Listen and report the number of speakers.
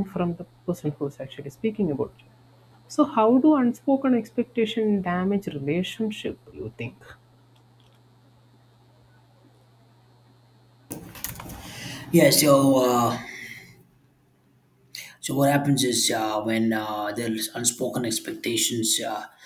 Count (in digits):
2